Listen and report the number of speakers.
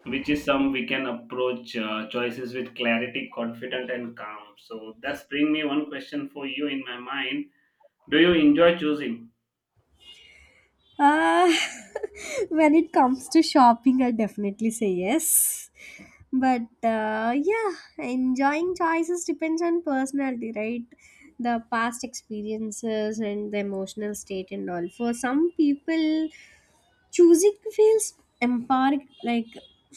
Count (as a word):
two